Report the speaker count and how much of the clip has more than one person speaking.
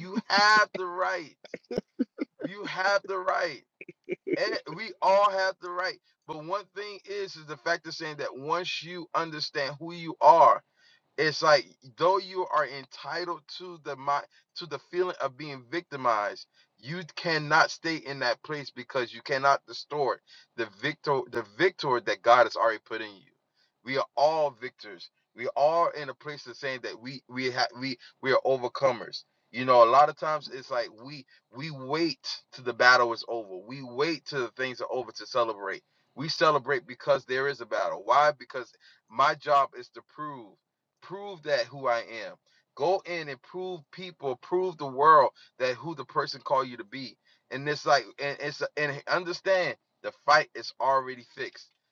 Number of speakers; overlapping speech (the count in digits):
1, no overlap